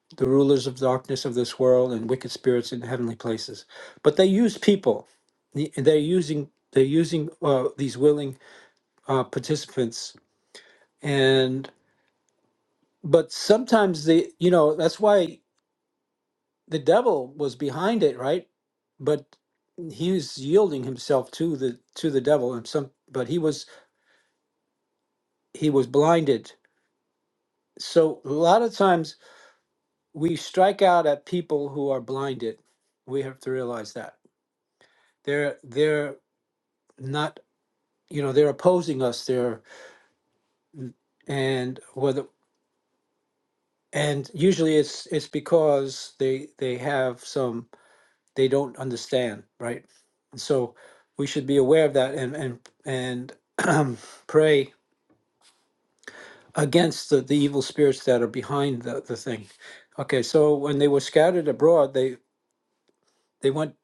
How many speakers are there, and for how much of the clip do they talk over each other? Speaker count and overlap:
1, no overlap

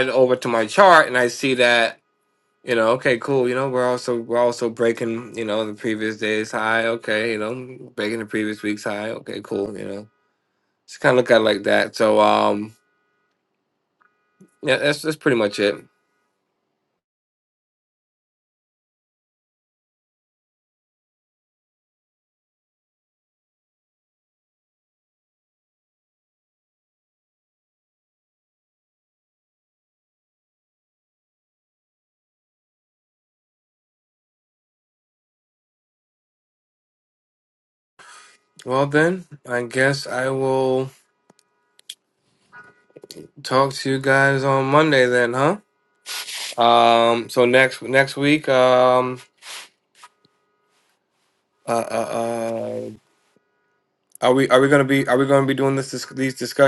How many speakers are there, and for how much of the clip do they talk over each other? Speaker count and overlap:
1, no overlap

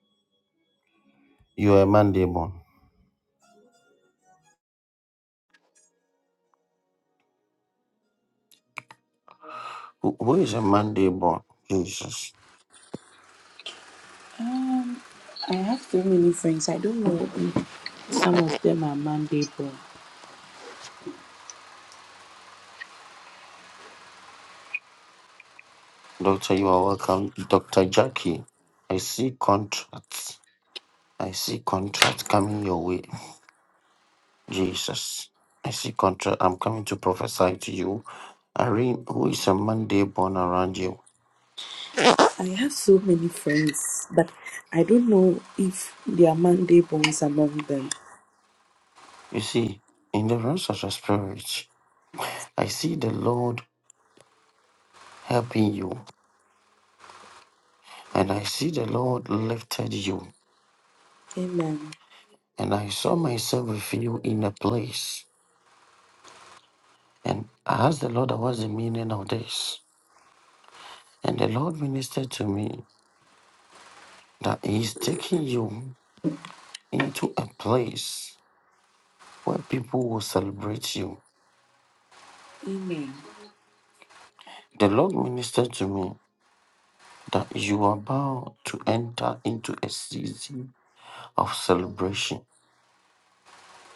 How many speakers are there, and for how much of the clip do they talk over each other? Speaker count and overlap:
2, no overlap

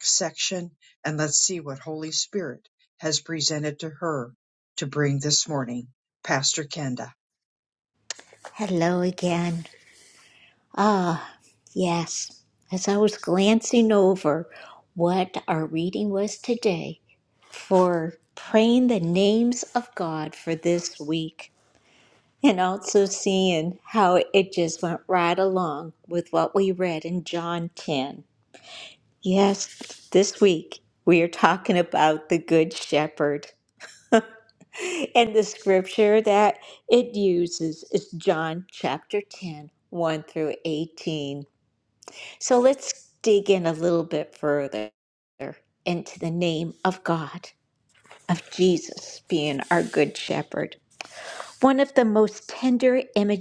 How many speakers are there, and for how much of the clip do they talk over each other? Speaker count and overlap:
2, no overlap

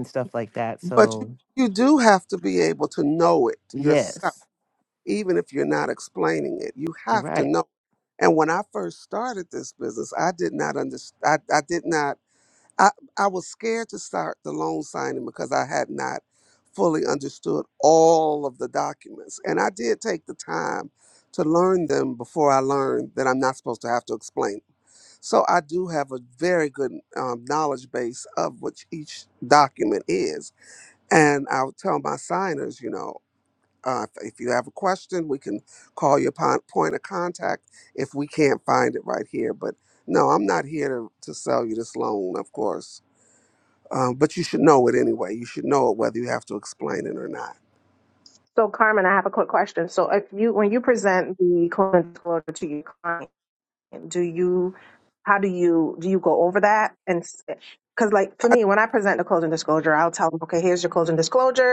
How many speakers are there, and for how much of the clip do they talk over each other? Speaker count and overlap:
3, about 2%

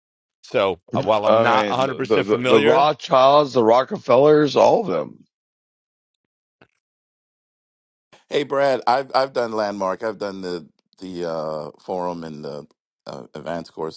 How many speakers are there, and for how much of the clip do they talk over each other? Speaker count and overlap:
3, about 11%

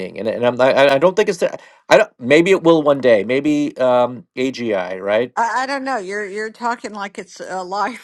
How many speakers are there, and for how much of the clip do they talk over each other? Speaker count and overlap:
2, no overlap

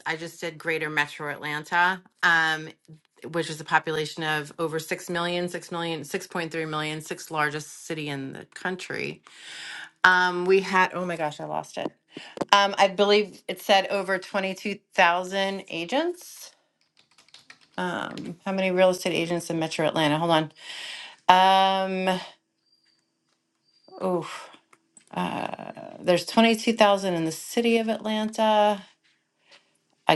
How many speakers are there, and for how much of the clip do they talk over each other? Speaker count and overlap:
1, no overlap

